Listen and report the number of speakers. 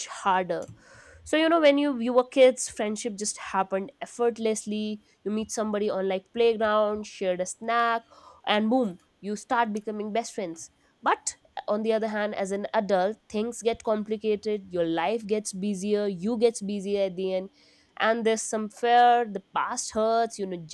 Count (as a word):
one